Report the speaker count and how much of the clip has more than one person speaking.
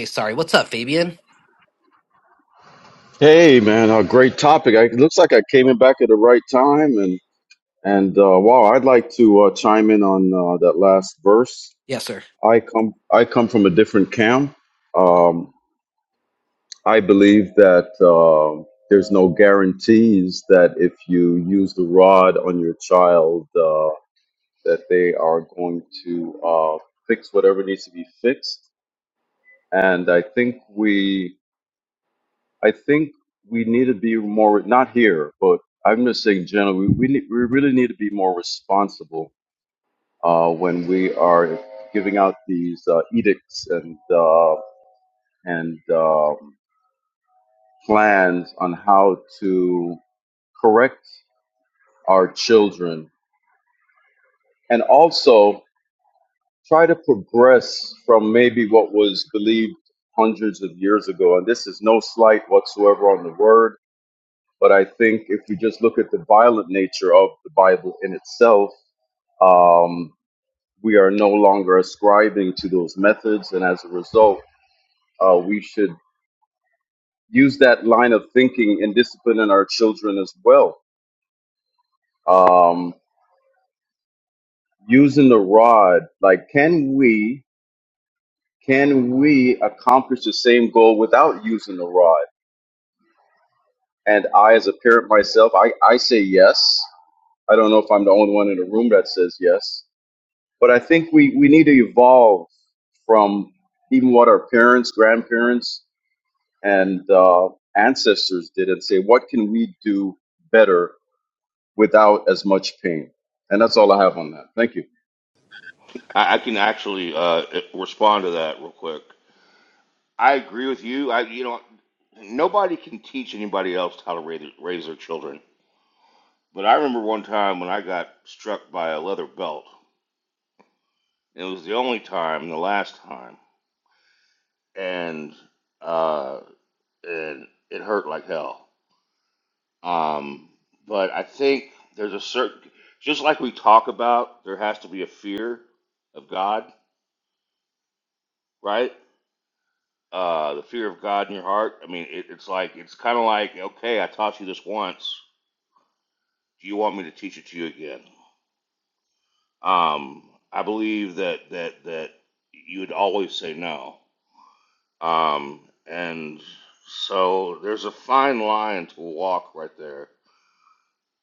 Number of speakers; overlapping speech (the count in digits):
3, no overlap